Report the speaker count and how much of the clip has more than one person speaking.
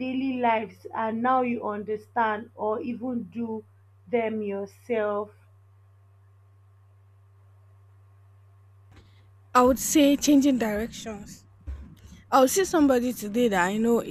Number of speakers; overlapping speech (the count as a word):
two, no overlap